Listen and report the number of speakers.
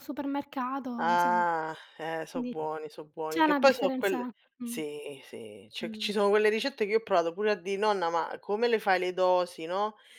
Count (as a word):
two